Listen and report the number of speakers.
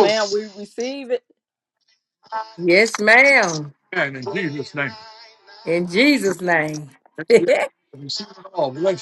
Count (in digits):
3